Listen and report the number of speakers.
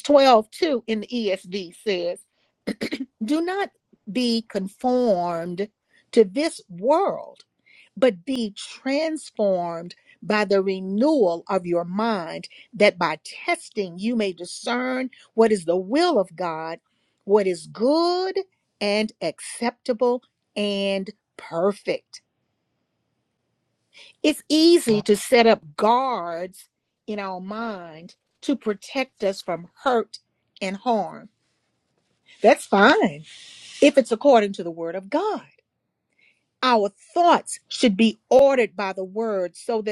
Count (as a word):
one